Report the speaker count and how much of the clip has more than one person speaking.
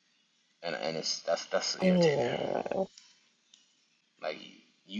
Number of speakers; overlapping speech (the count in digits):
2, about 8%